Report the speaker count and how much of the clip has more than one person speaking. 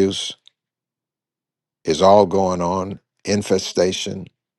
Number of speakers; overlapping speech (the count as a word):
one, no overlap